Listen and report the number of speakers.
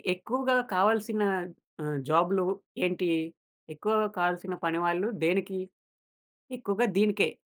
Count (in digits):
1